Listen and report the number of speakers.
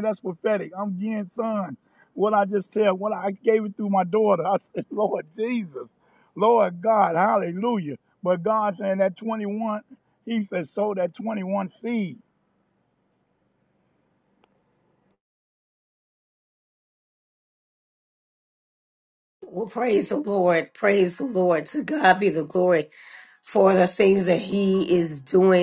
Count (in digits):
2